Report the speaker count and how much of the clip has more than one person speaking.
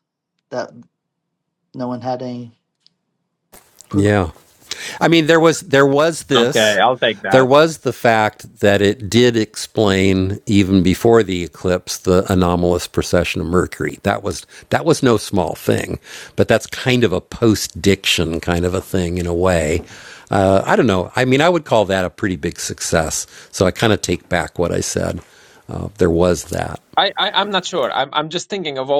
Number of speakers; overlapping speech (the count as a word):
three, about 2%